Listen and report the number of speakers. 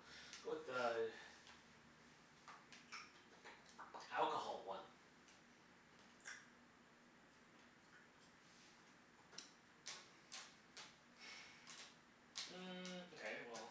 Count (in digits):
2